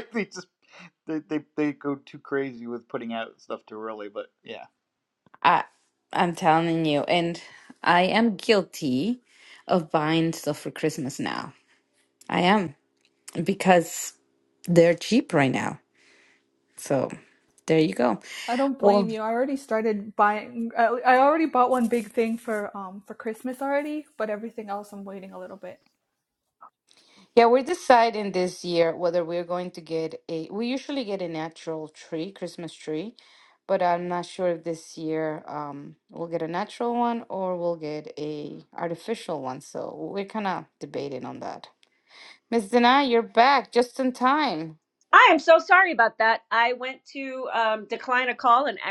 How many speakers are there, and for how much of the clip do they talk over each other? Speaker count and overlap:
4, about 1%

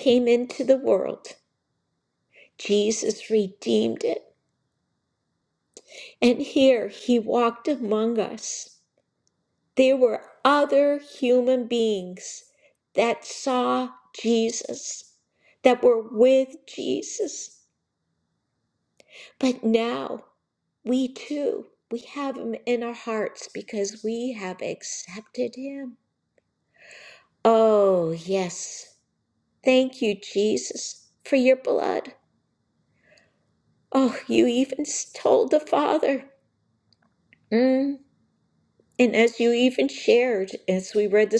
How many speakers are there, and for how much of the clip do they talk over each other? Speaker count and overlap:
1, no overlap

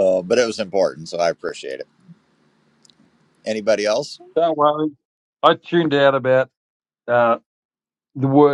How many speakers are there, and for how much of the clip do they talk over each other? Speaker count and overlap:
2, no overlap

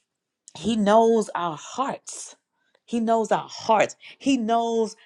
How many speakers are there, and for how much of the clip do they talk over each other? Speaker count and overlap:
1, no overlap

